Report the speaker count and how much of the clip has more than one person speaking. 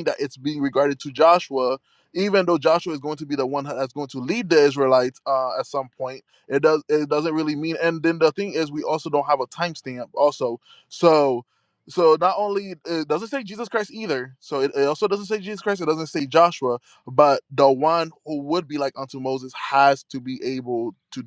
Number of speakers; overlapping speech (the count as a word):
one, no overlap